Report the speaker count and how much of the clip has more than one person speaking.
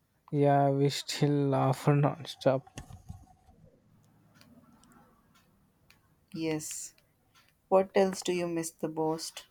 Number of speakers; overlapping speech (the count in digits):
2, no overlap